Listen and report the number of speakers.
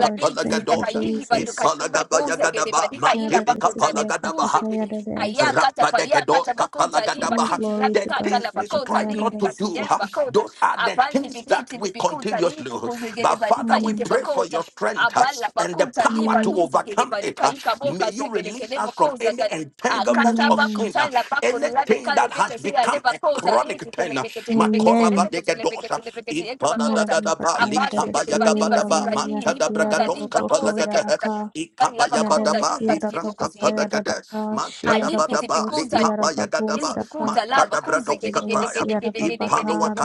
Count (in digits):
3